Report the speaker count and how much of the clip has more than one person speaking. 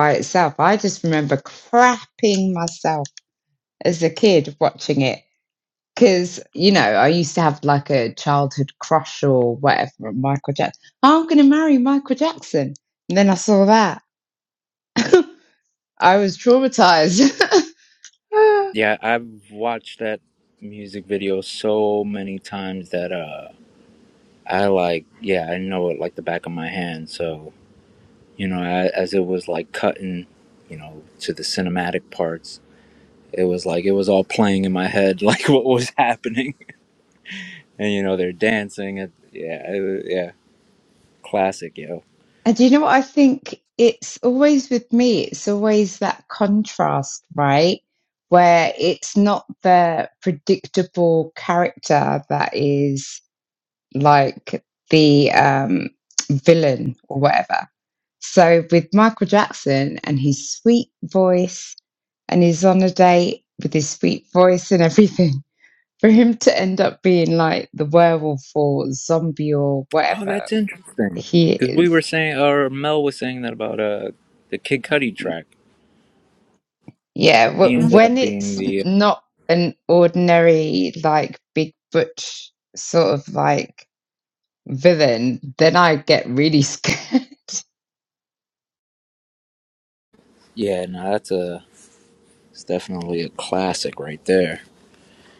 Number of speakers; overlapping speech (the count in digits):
2, about 2%